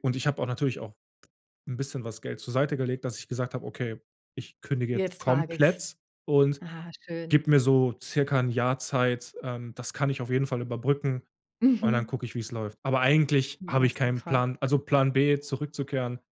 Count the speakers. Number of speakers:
2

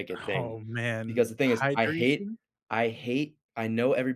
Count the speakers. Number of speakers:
2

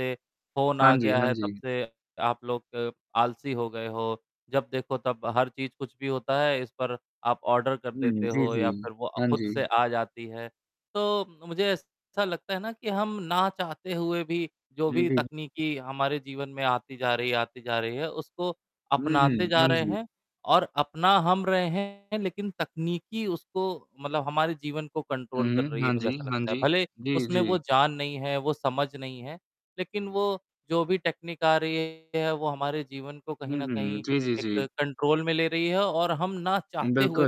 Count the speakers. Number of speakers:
2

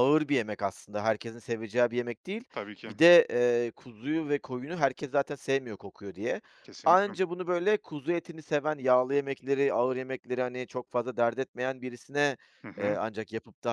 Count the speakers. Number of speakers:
2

